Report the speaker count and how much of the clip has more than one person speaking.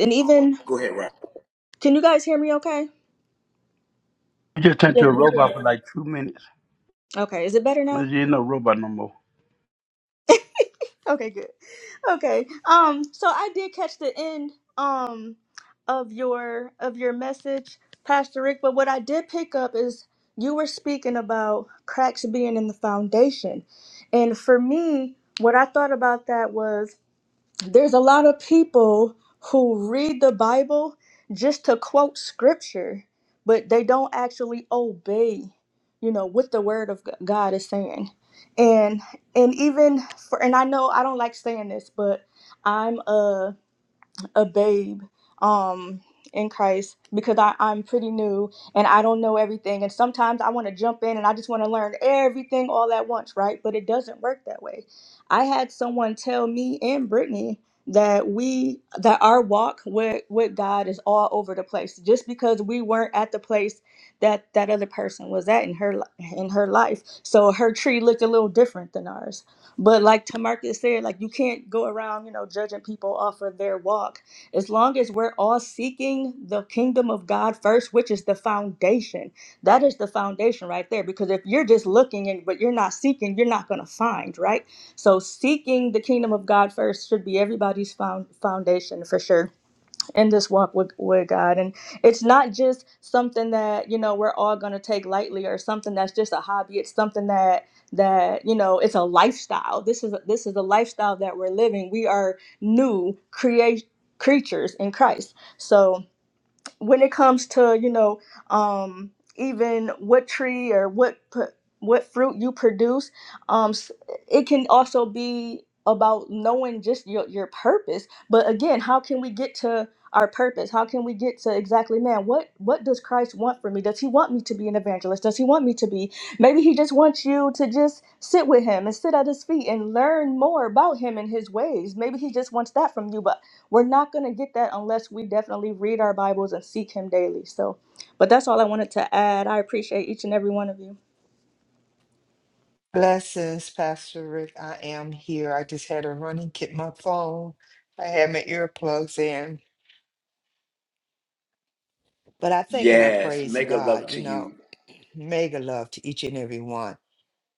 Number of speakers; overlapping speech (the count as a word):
four, about 1%